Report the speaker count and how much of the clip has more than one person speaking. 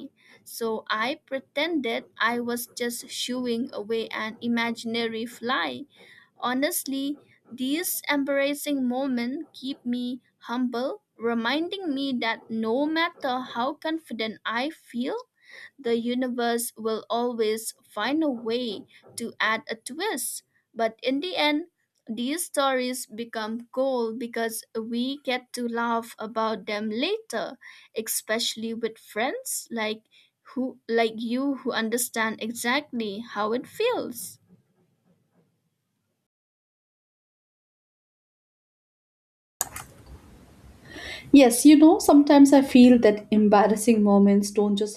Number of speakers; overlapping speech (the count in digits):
2, no overlap